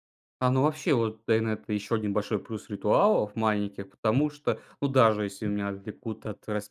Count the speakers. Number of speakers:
1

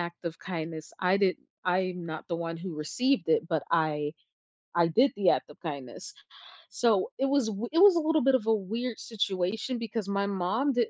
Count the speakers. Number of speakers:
1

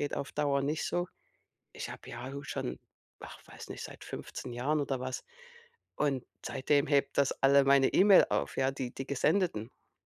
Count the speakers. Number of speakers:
1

